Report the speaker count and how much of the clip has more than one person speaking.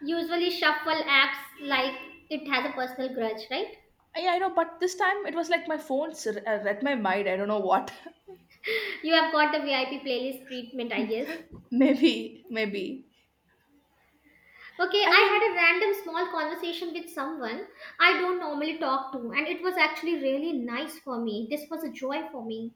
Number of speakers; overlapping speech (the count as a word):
two, about 2%